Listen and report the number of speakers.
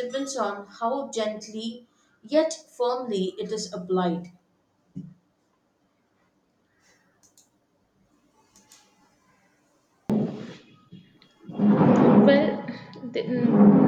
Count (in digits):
2